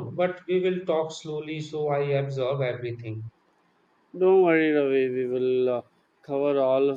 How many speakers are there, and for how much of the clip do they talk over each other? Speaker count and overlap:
two, no overlap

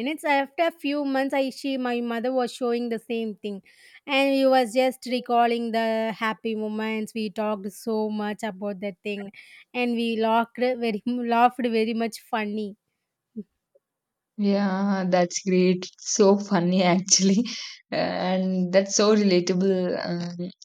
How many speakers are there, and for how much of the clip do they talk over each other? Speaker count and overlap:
two, no overlap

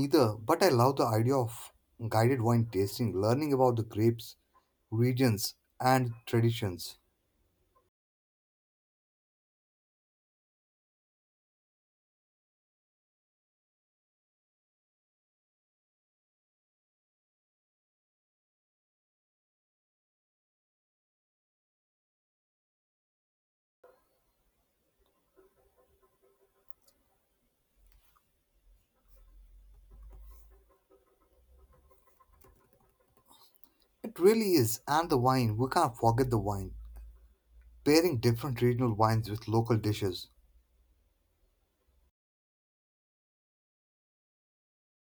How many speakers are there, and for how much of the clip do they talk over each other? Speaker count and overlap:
one, no overlap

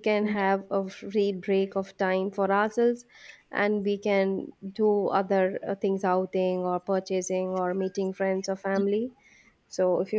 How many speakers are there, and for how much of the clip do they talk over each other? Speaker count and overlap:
one, no overlap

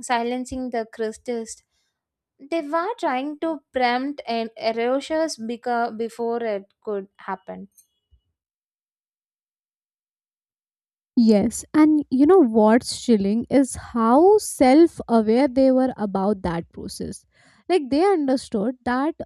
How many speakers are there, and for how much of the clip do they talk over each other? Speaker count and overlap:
two, no overlap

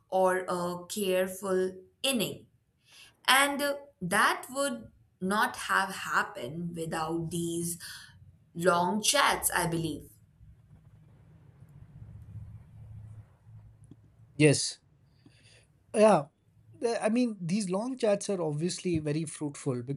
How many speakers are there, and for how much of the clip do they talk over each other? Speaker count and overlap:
two, no overlap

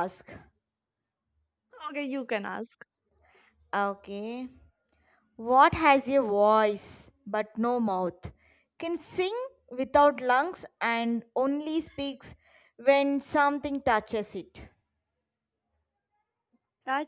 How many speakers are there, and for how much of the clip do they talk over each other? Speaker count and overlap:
two, no overlap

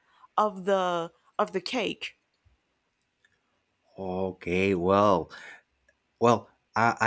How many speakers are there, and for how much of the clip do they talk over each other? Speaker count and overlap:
two, no overlap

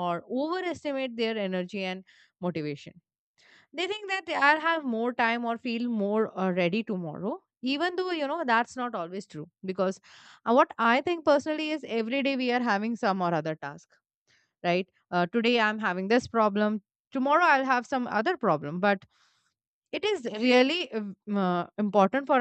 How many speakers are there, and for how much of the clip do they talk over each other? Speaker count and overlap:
one, no overlap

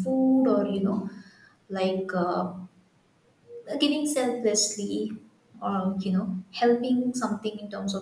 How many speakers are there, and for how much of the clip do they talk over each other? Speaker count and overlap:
one, no overlap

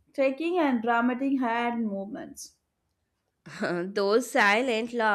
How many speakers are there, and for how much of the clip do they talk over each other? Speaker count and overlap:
two, no overlap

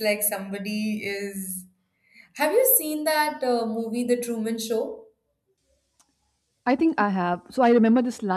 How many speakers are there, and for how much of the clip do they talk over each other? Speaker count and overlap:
two, no overlap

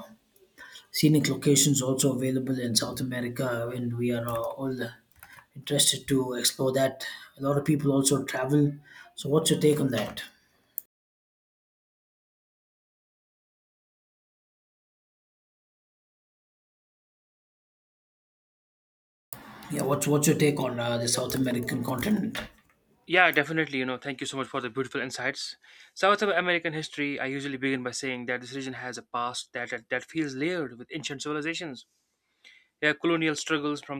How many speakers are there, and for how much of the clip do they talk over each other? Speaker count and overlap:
two, no overlap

